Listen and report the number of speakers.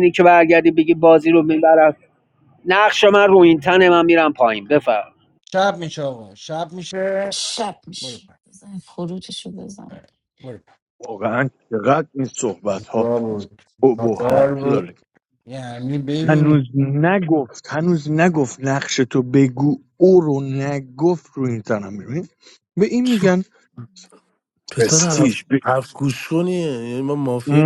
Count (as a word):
five